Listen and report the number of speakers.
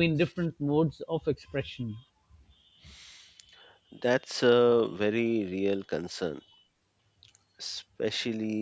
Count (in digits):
2